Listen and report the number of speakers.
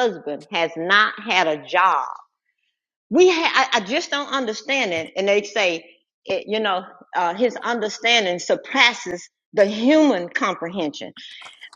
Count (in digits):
1